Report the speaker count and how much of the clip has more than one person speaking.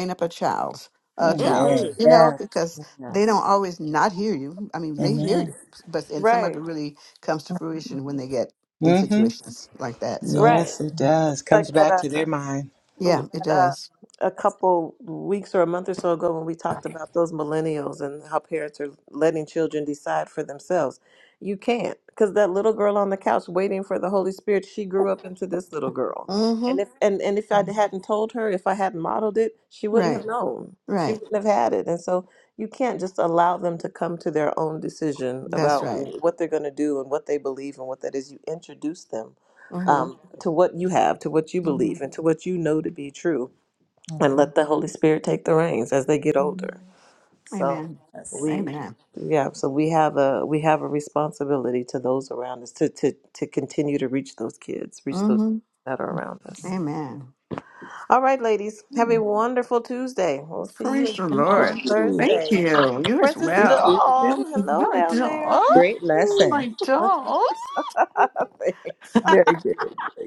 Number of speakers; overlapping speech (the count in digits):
4, about 16%